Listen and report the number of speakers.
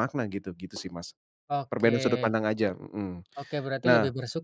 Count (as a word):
two